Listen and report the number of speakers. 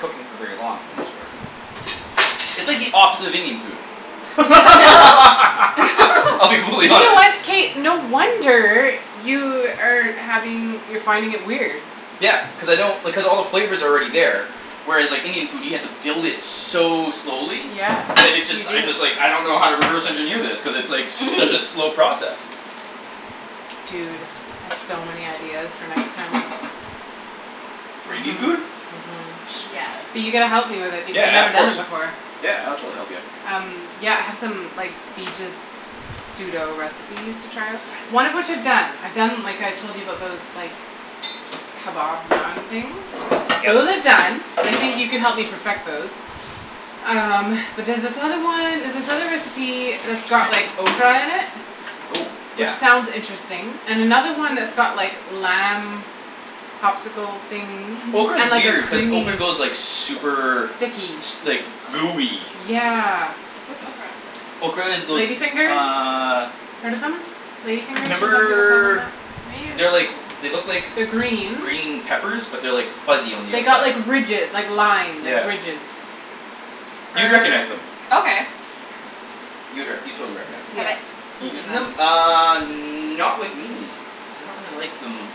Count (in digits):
3